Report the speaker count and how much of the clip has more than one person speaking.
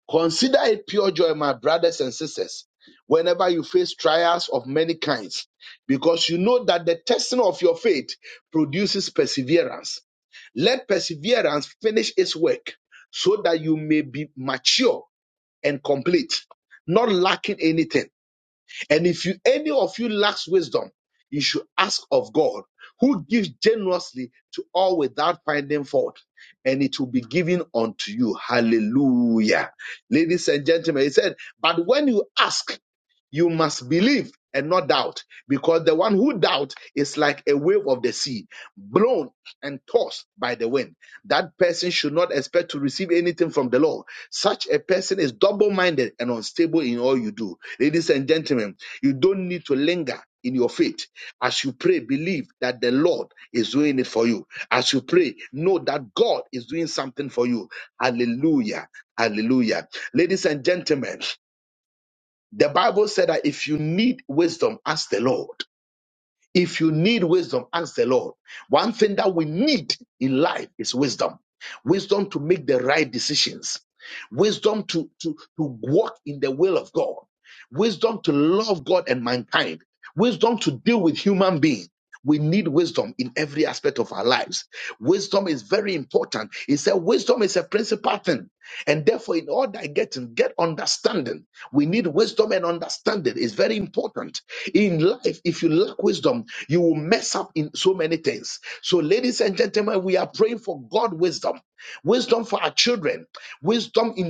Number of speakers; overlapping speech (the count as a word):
one, no overlap